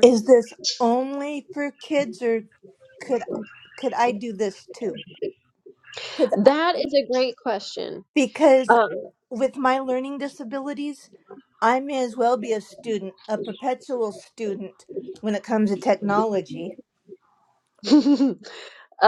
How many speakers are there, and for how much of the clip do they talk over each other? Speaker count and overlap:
2, about 1%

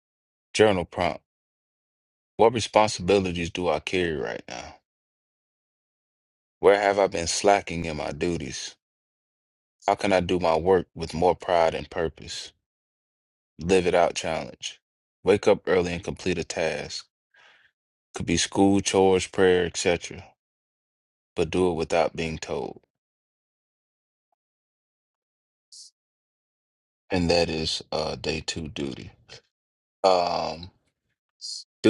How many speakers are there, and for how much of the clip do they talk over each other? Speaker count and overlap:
1, no overlap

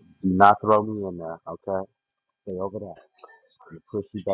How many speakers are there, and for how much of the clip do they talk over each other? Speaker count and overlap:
1, no overlap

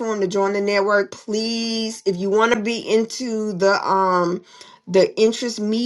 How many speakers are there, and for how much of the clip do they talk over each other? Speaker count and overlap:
1, no overlap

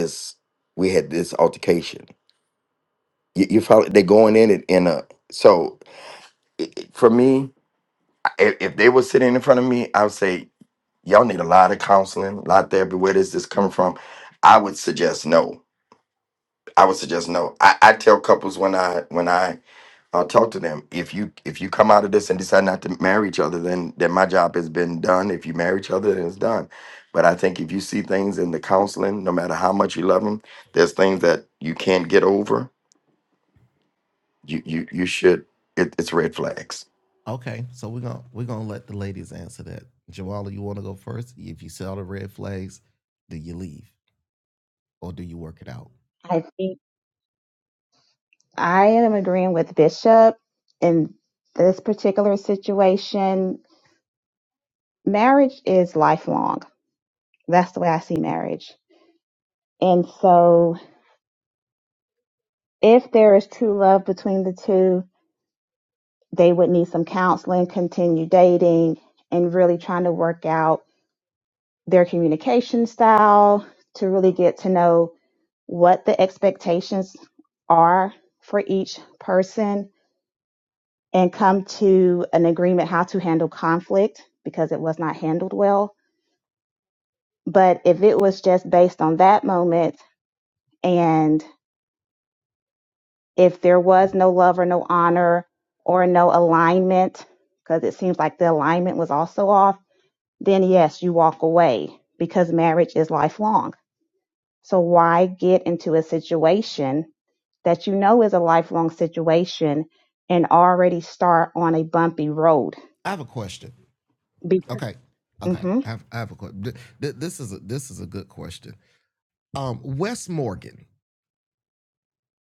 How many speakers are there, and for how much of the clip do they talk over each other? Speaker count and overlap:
3, under 1%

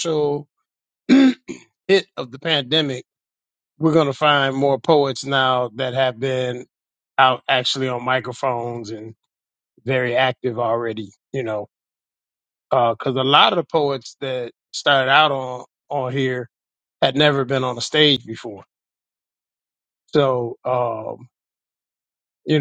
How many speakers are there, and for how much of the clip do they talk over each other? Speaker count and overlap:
1, no overlap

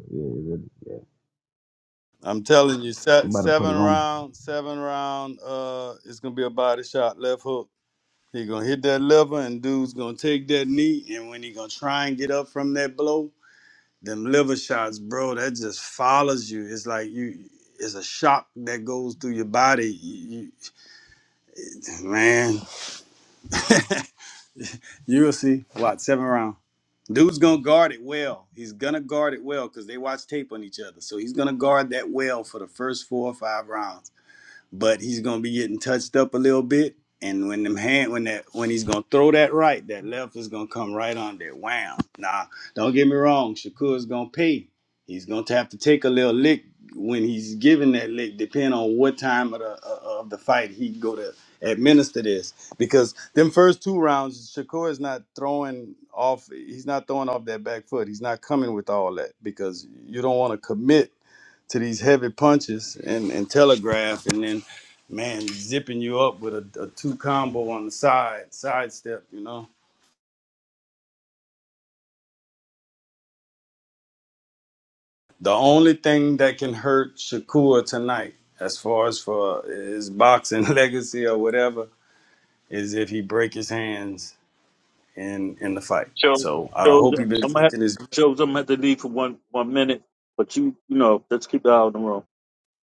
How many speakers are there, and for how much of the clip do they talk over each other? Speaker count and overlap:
3, about 2%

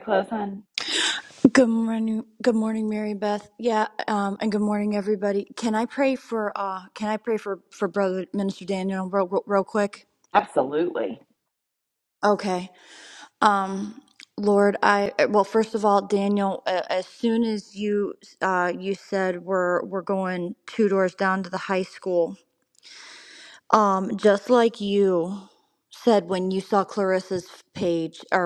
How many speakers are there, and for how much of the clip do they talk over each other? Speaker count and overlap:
2, no overlap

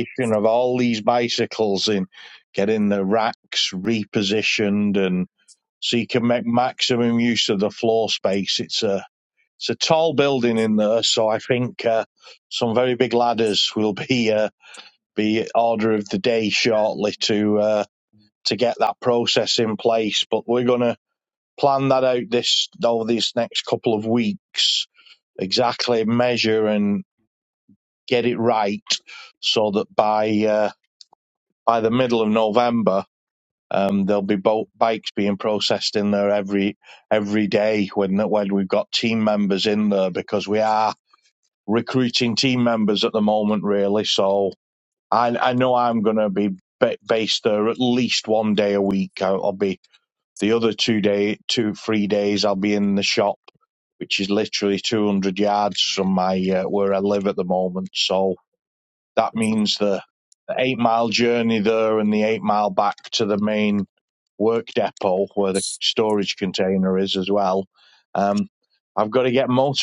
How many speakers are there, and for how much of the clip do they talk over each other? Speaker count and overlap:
1, no overlap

